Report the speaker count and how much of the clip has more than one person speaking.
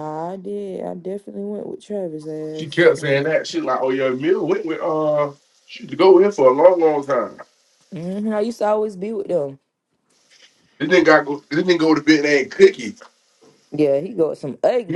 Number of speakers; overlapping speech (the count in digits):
2, about 5%